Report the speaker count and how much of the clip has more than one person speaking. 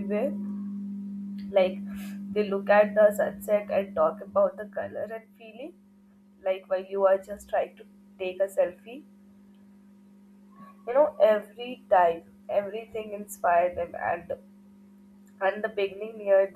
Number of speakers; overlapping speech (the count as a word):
one, no overlap